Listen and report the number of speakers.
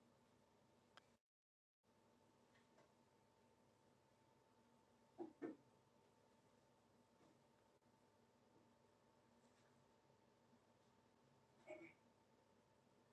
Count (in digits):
0